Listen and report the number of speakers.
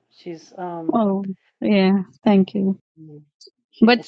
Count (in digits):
2